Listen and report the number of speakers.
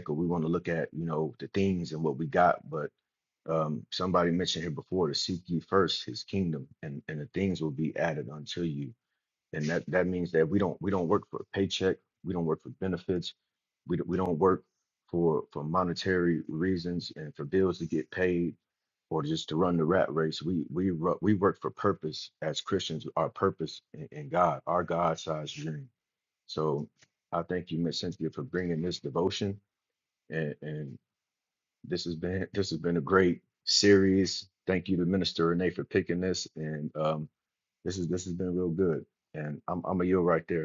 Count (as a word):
one